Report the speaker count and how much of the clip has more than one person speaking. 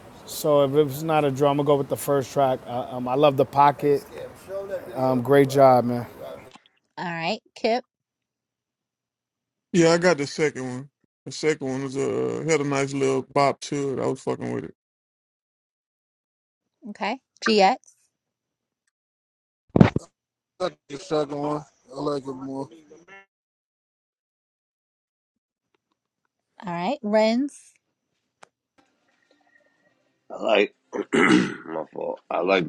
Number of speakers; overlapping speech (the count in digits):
5, no overlap